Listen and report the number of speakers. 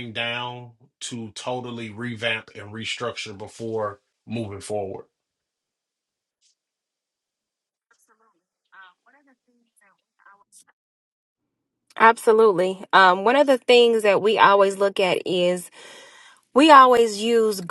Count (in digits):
2